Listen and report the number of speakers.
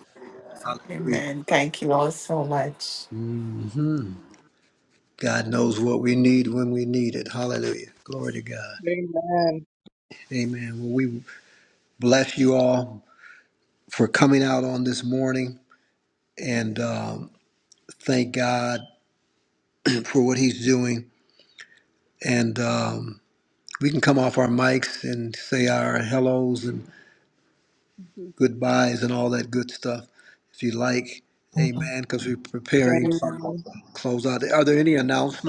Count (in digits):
3